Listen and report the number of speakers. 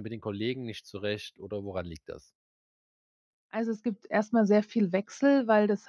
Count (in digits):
2